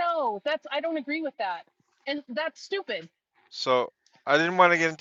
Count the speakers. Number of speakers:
2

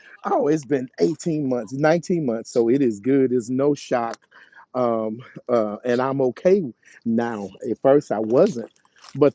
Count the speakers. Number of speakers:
1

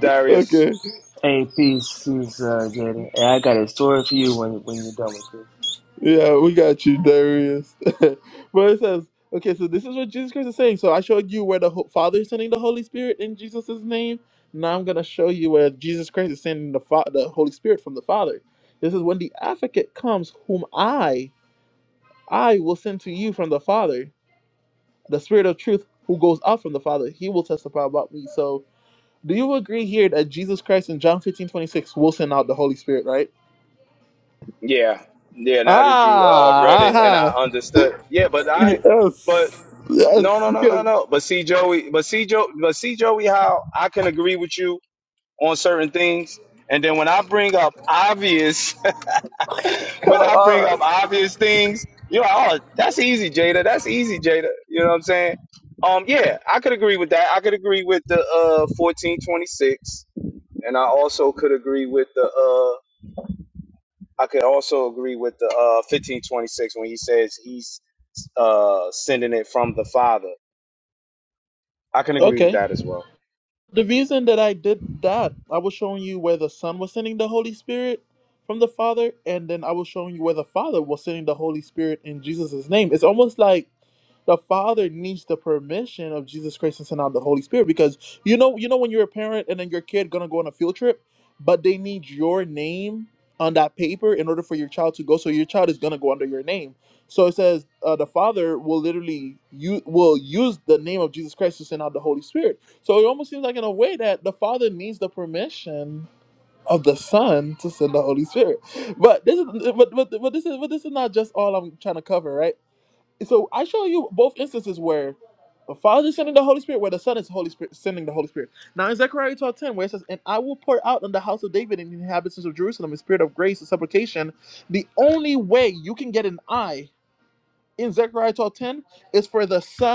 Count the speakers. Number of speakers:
3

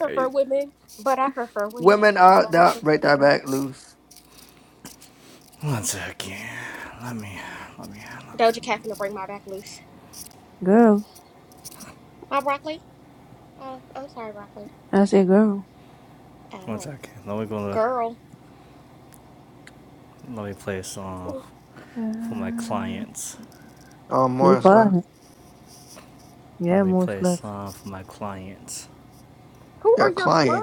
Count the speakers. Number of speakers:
4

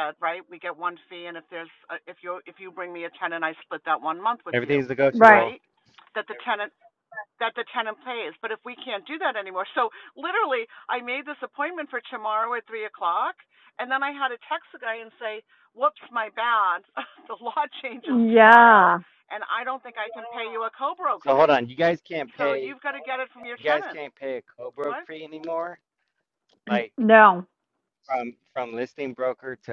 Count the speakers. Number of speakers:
3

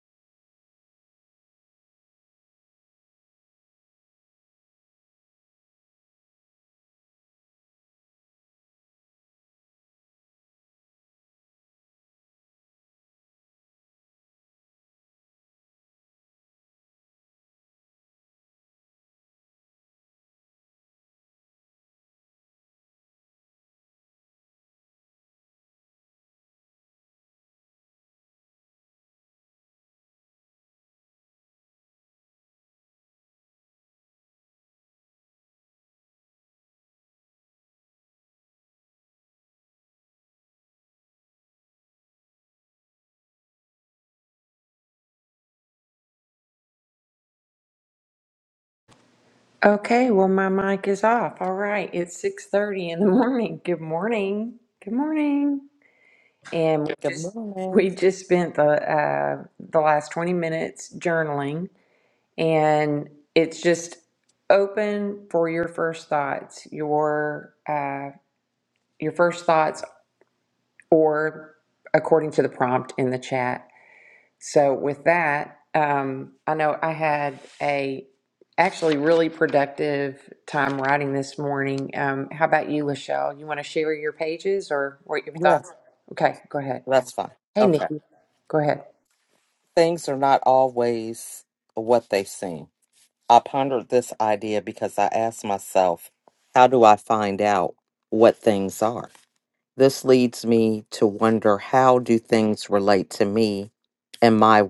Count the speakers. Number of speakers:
2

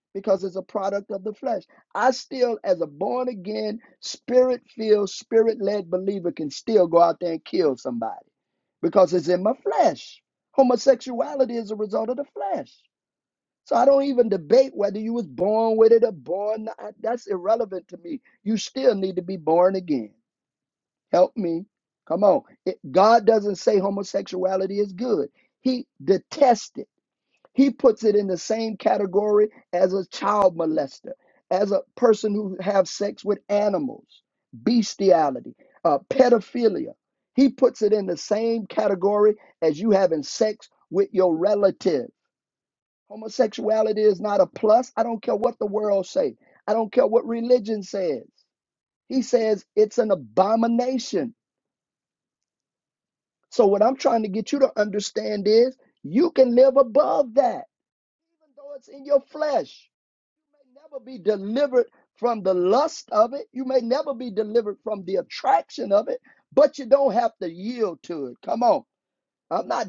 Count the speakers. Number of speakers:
1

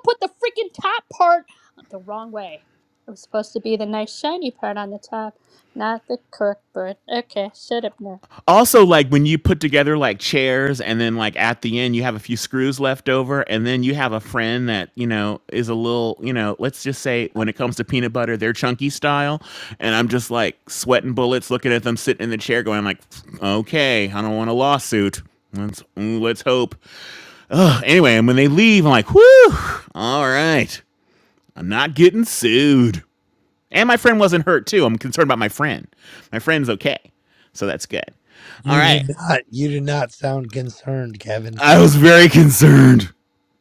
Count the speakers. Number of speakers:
3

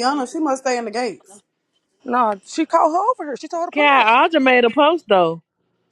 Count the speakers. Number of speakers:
3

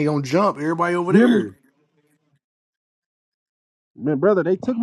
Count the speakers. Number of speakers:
2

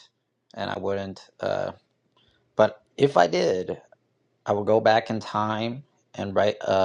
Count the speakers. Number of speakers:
1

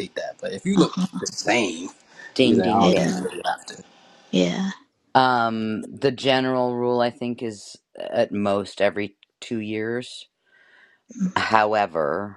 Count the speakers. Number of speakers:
3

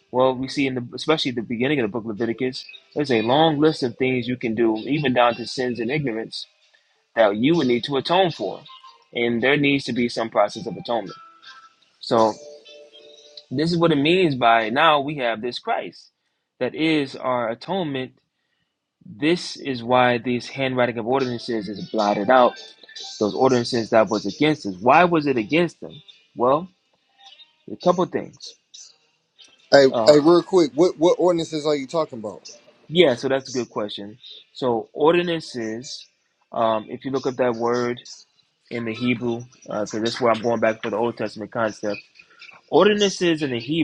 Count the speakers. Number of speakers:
2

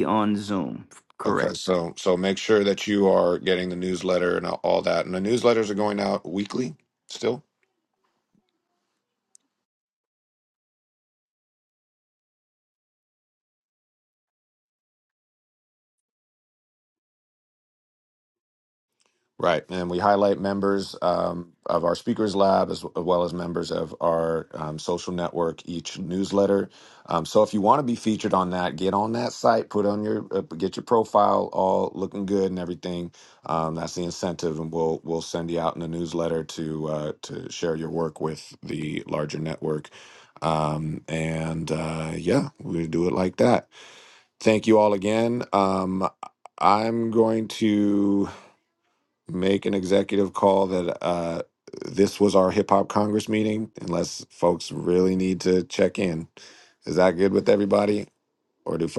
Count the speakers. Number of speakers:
2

